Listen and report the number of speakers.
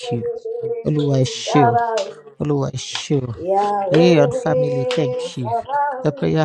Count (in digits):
2